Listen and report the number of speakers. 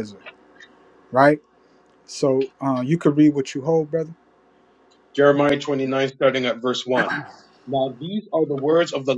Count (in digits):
2